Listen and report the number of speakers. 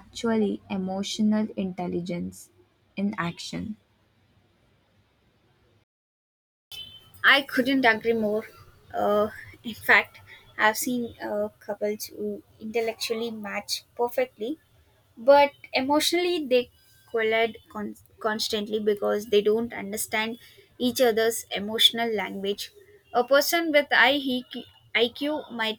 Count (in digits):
2